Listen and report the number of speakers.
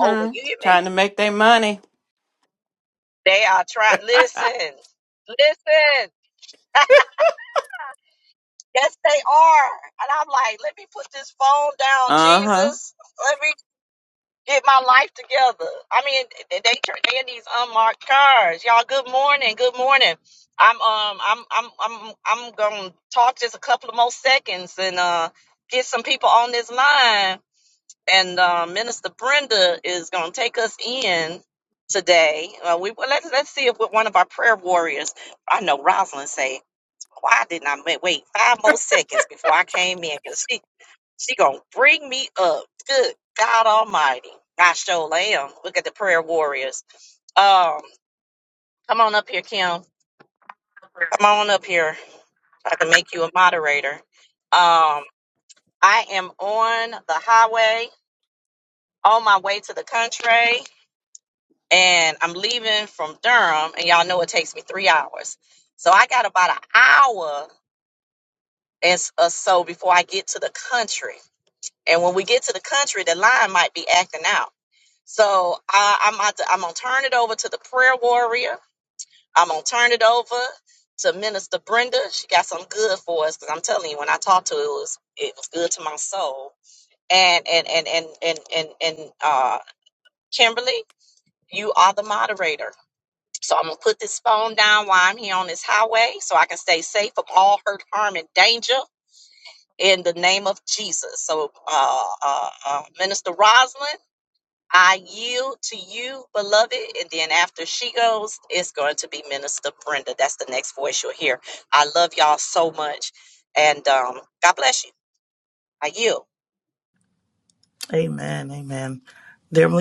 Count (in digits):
3